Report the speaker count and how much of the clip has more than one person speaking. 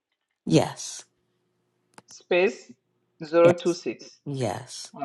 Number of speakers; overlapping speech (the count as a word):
two, about 2%